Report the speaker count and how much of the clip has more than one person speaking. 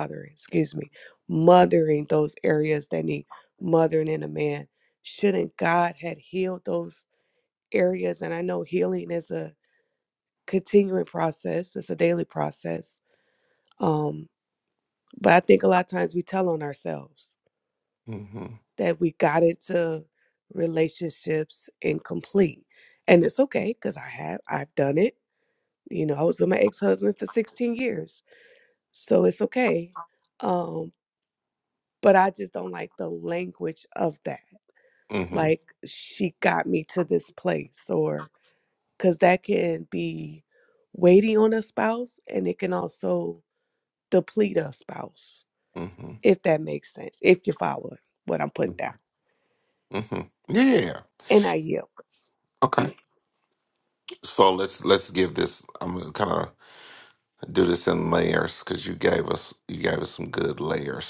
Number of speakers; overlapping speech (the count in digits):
2, under 1%